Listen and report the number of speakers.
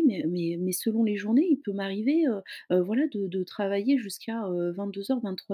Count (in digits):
1